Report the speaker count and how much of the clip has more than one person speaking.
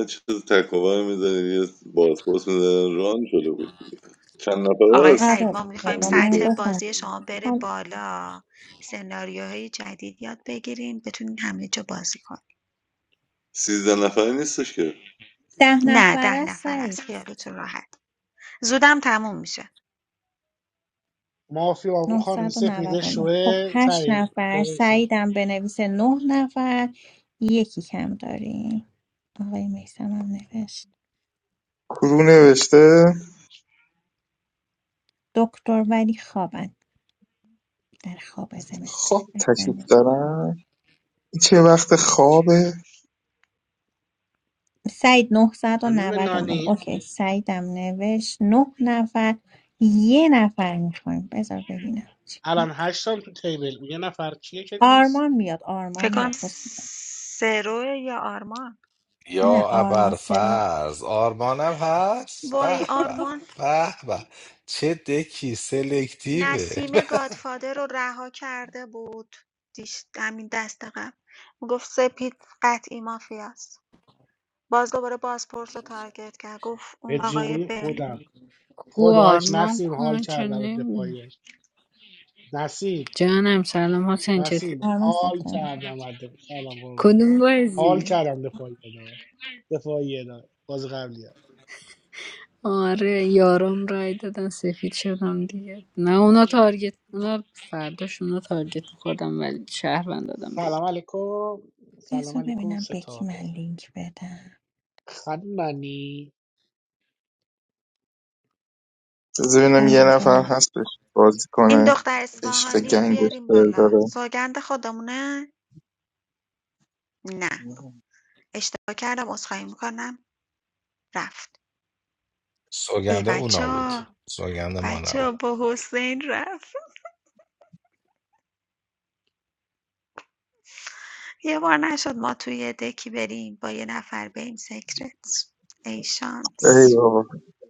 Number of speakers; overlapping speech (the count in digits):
7, about 15%